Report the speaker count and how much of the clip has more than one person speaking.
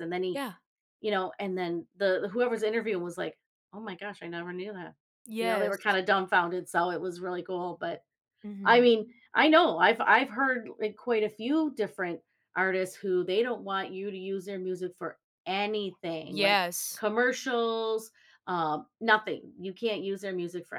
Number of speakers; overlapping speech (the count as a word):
two, about 3%